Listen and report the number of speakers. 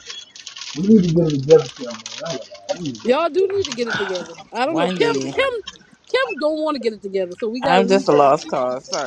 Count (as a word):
three